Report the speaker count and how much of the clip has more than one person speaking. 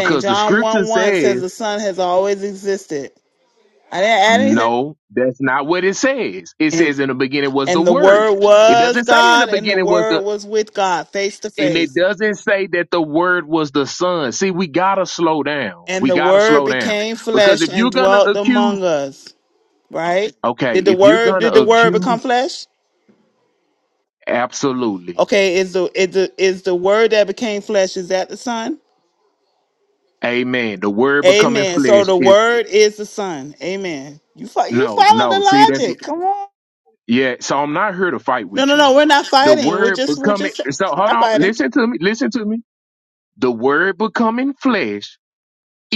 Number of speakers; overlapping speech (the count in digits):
2, about 29%